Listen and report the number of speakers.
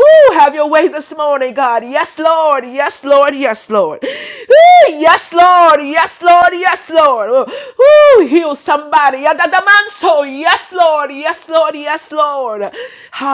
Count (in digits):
1